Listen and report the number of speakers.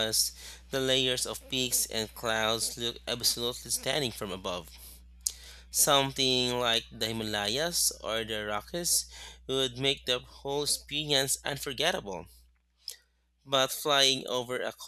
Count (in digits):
1